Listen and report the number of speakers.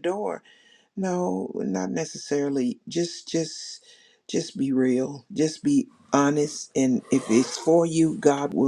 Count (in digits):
1